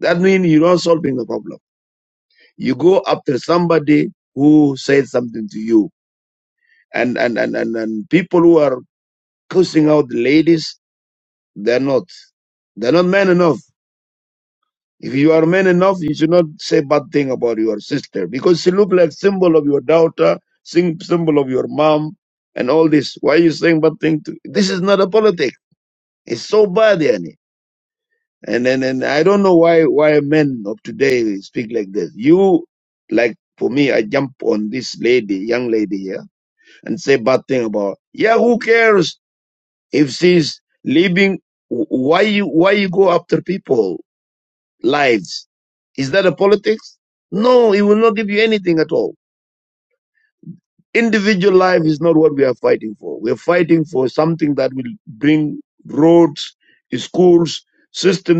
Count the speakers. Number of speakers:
one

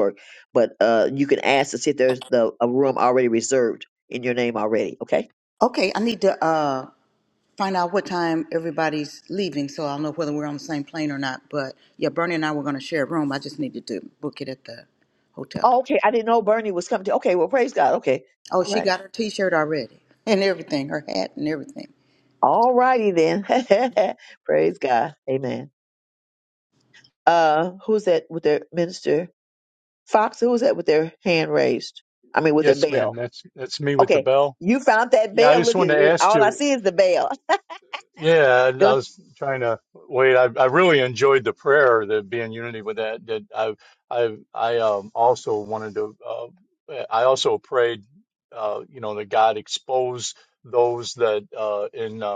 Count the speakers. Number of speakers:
three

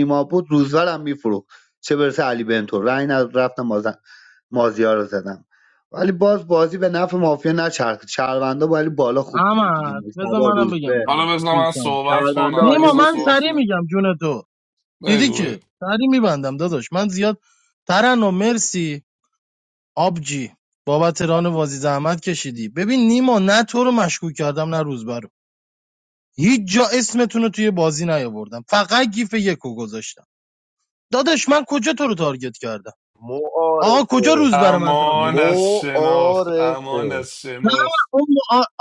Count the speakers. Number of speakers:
four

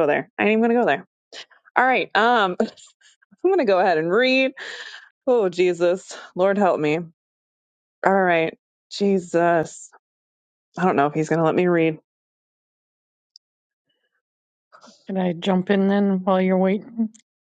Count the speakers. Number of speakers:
two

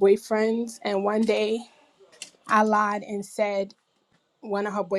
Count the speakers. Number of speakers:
one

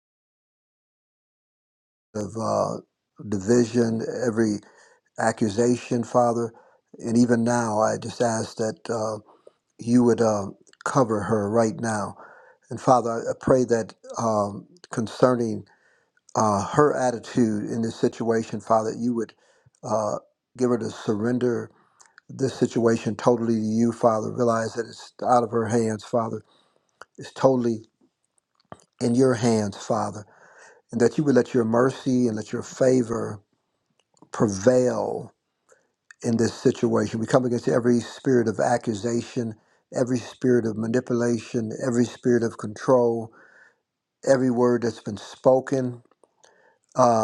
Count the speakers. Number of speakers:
one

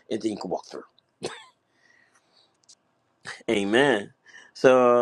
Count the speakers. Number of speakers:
one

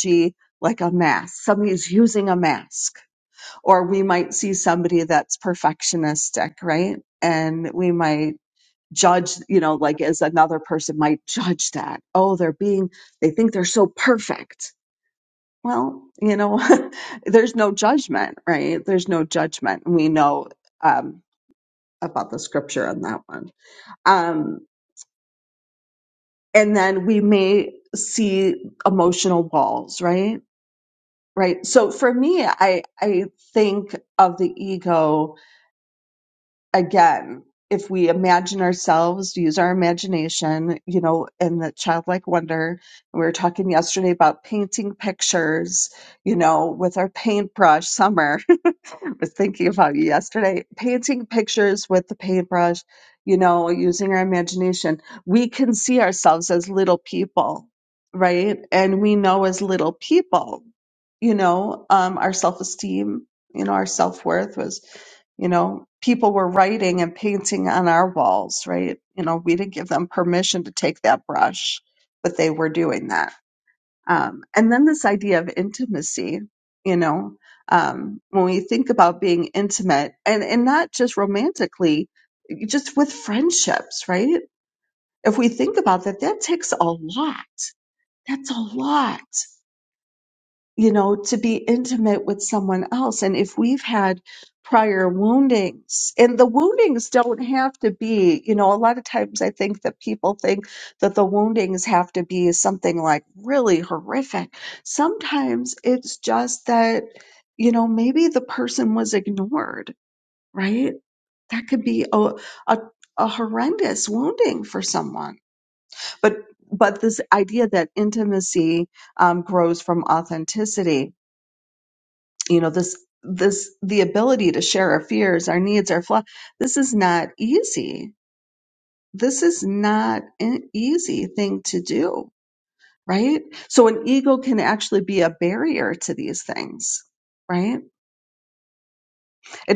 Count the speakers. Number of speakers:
one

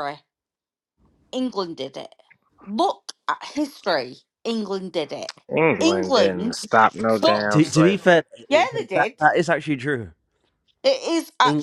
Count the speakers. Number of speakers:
three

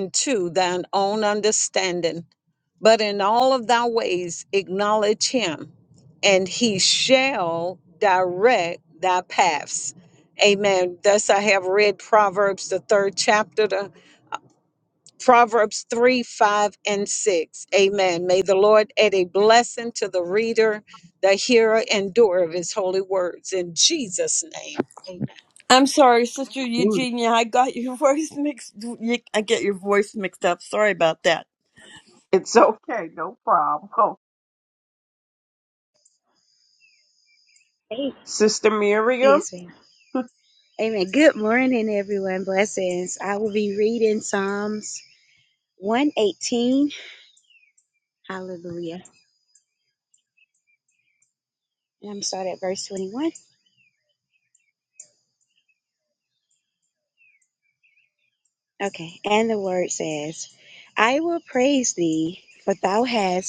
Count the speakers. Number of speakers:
four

